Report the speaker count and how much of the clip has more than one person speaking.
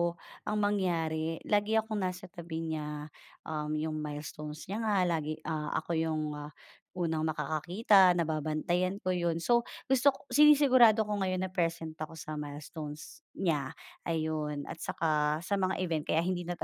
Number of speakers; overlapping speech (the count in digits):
1, no overlap